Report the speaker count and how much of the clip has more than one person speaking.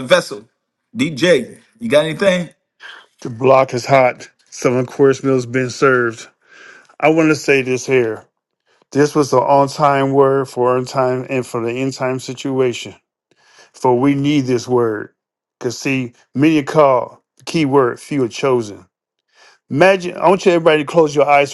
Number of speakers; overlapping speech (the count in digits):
2, no overlap